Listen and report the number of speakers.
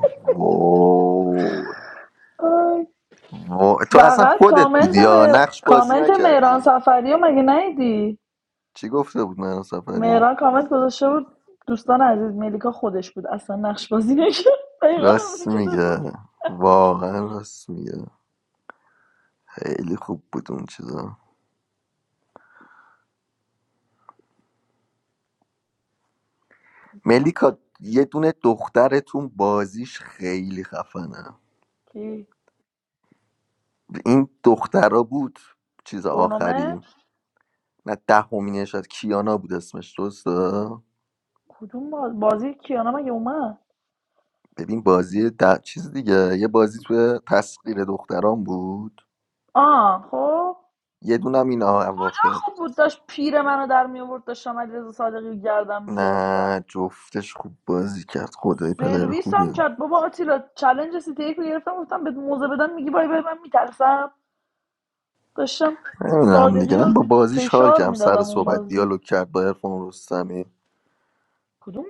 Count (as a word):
two